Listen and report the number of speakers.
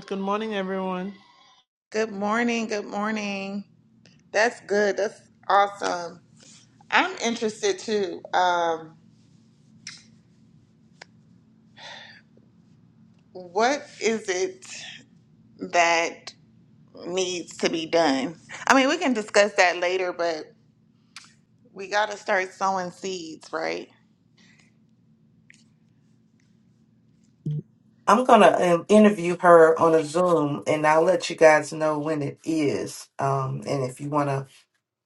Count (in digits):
3